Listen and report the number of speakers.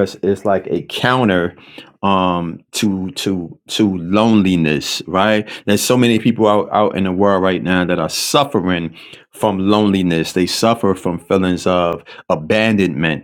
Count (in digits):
1